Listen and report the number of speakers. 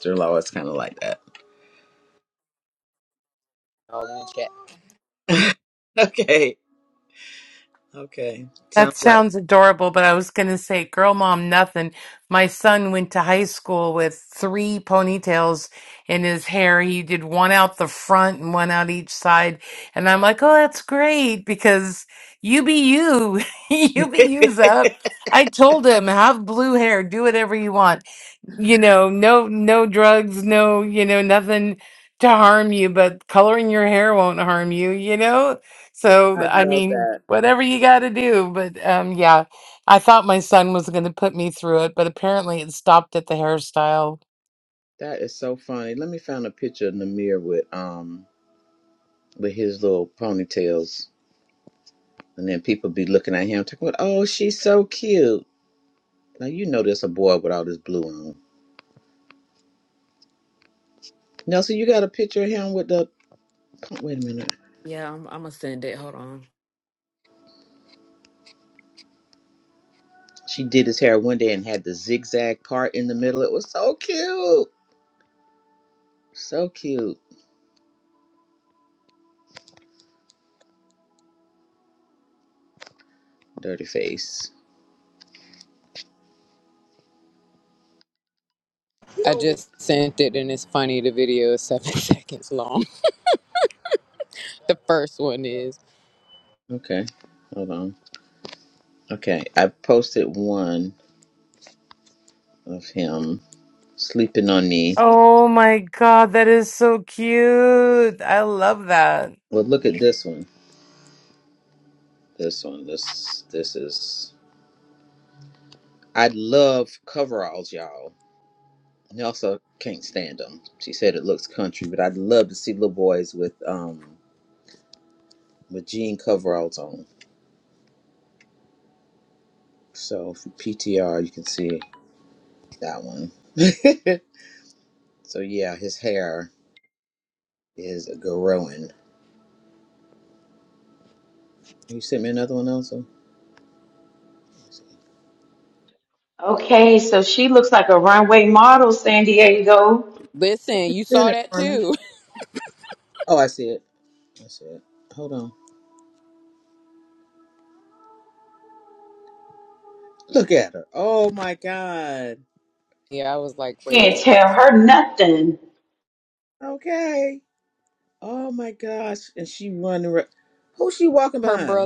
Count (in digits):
5